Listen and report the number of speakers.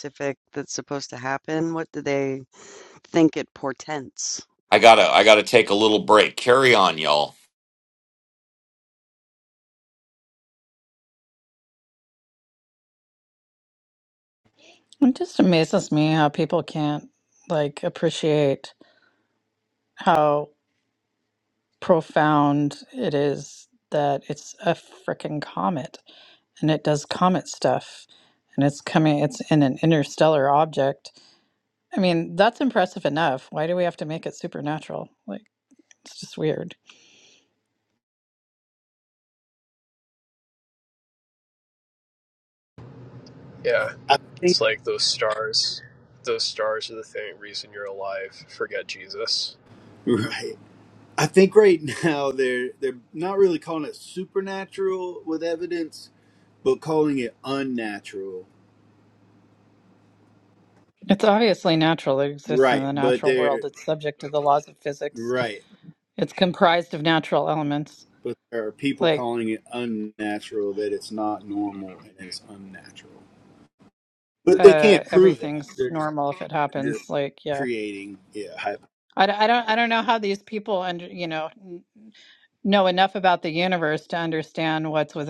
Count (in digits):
5